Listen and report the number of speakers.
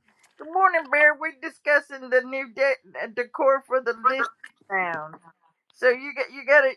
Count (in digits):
1